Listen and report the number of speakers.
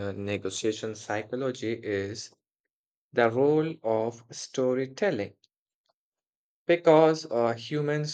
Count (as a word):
one